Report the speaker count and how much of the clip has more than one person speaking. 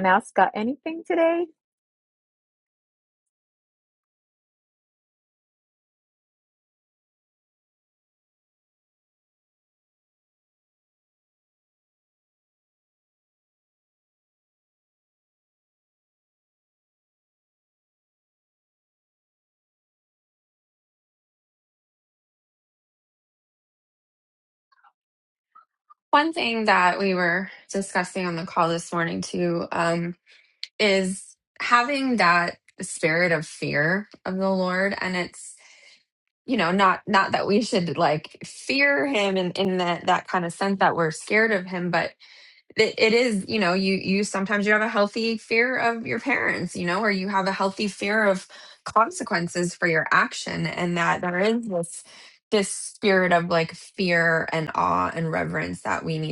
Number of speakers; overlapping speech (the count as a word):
two, no overlap